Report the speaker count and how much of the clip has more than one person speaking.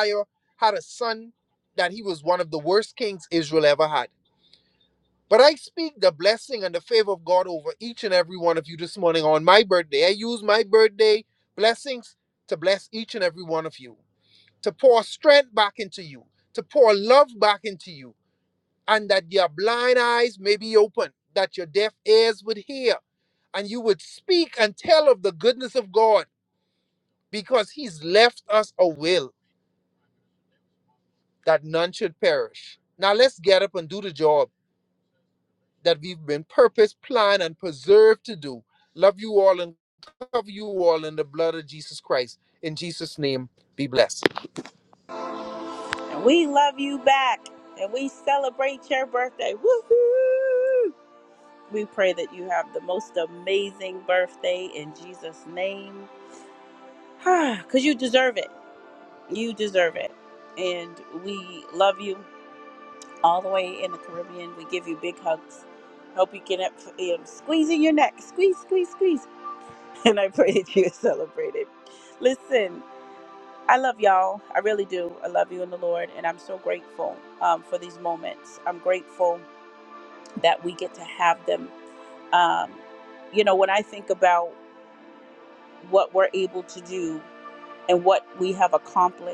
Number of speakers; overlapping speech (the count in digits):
2, no overlap